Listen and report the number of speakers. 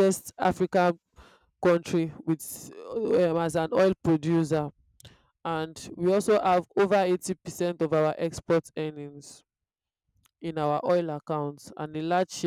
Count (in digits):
1